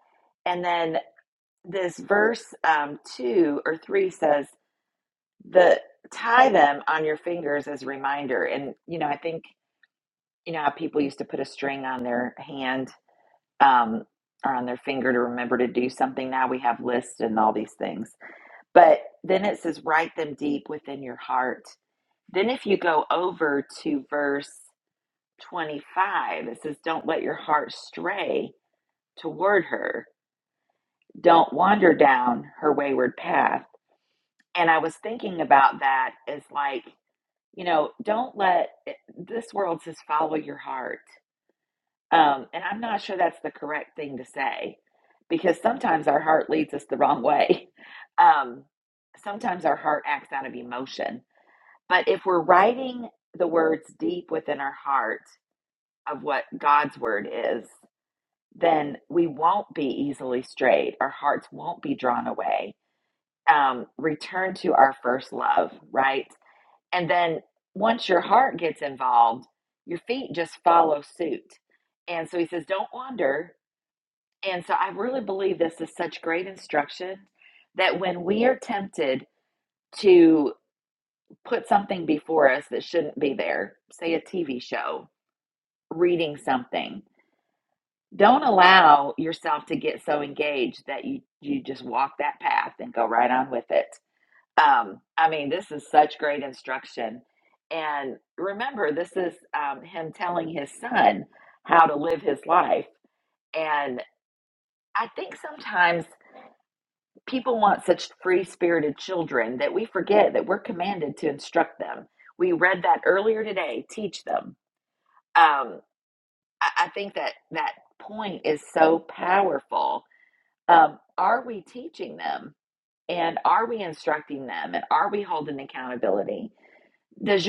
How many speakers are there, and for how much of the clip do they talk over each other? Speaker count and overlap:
1, no overlap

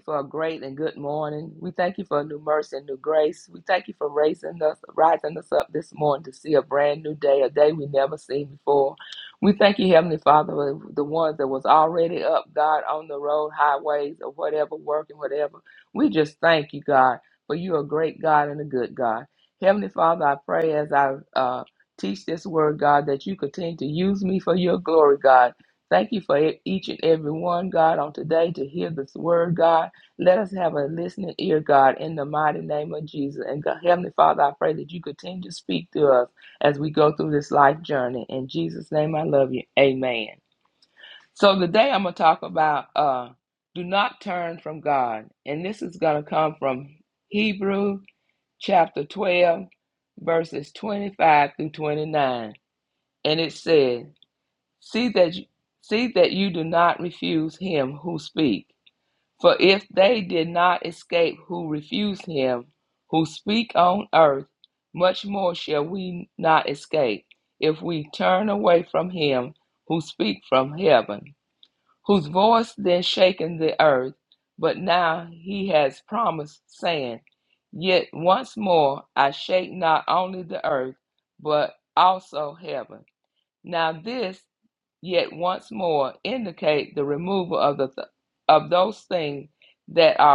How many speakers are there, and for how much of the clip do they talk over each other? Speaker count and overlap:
1, no overlap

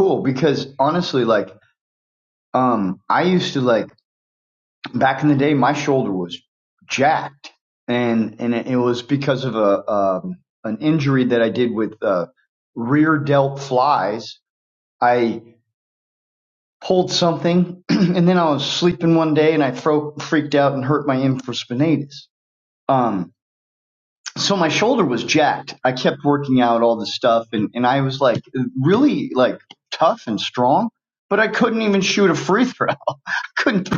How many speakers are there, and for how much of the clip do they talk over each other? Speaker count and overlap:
1, no overlap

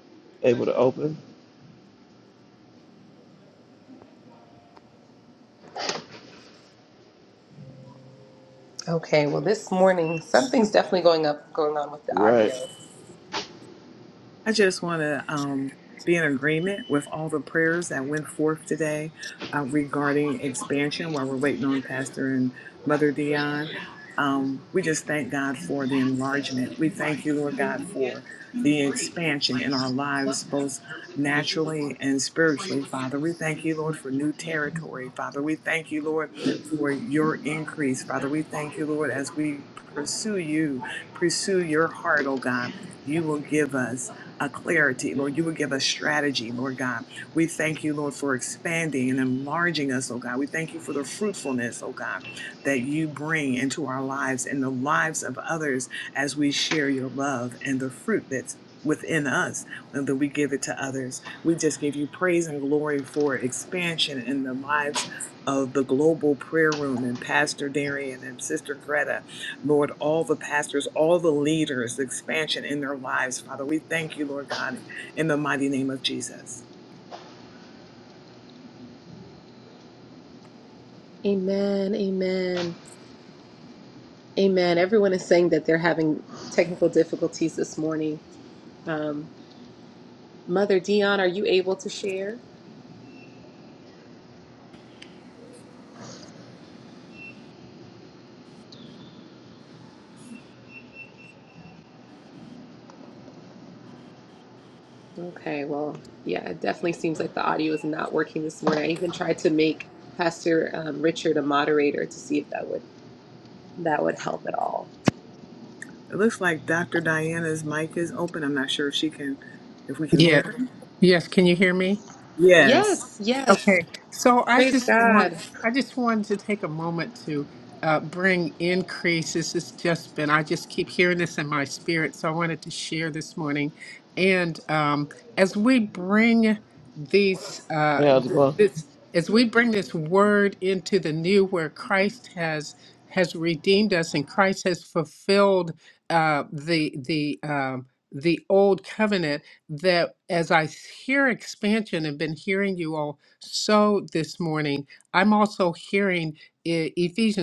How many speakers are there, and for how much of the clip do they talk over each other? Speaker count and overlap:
4, about 2%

